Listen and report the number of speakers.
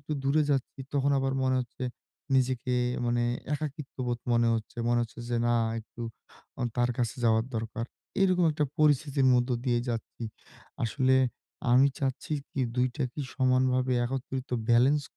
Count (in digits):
1